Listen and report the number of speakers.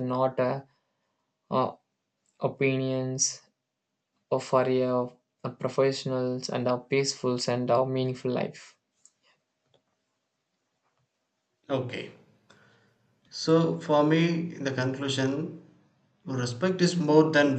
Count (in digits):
2